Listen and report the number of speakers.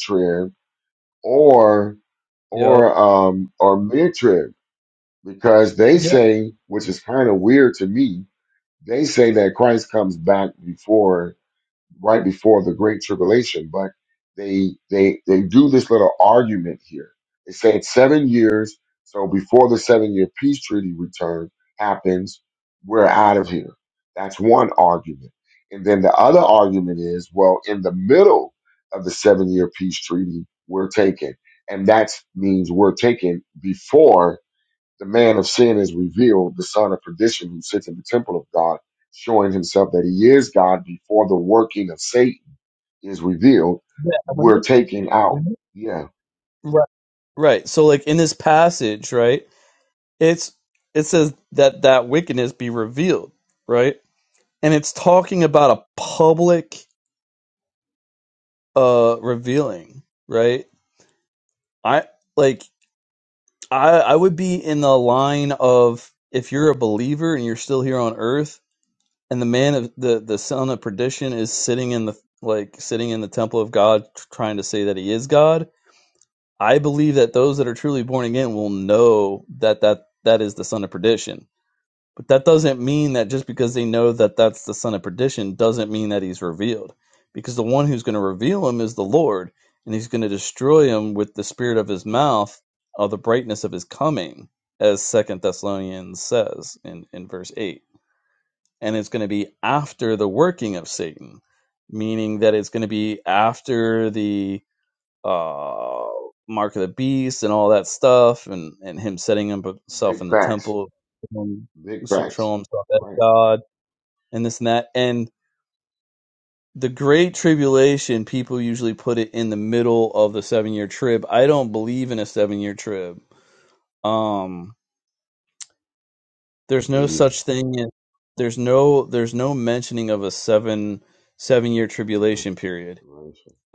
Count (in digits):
2